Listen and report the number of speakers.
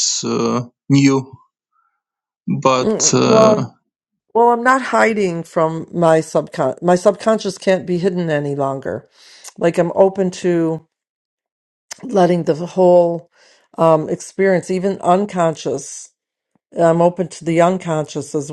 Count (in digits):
2